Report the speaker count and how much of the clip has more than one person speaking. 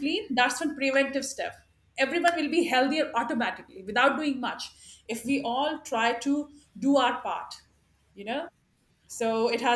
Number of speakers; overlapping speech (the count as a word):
one, no overlap